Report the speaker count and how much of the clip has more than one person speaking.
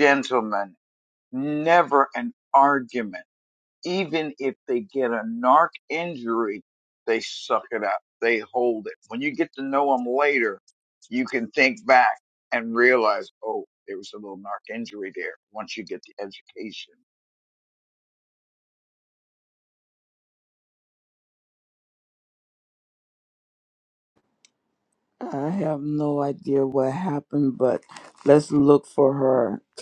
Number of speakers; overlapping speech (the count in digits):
2, no overlap